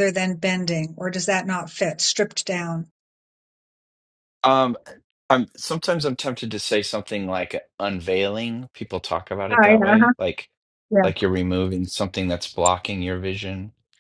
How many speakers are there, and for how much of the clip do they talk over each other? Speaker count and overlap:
two, about 5%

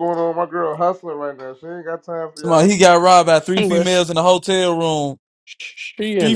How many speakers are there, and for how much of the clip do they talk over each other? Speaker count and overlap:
three, about 14%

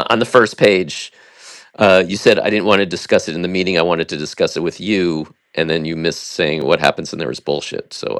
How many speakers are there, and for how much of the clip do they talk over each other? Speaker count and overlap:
one, no overlap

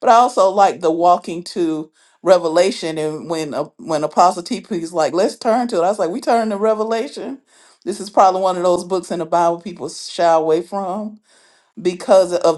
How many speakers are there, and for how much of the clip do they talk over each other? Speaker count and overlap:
one, no overlap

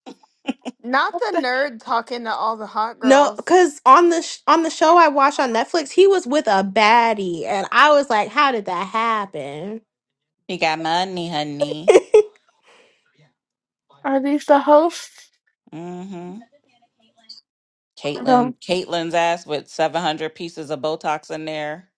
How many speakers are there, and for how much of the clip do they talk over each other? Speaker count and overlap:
four, about 3%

